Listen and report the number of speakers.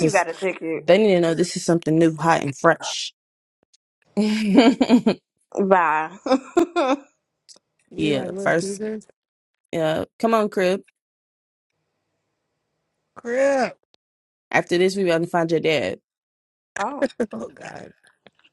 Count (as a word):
three